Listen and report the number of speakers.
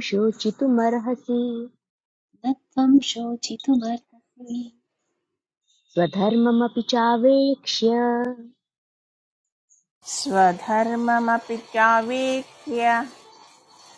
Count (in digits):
3